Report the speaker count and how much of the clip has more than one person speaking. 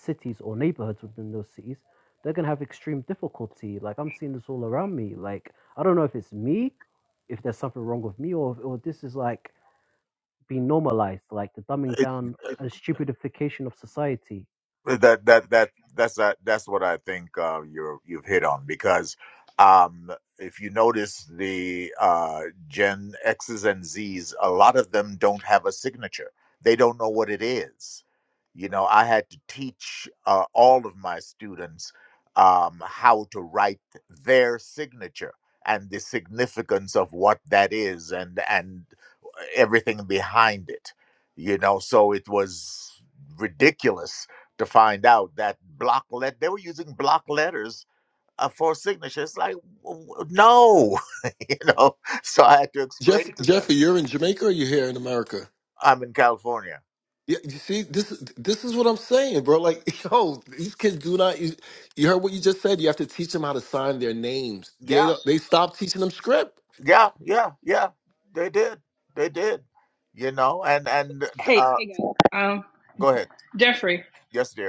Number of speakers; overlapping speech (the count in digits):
4, about 2%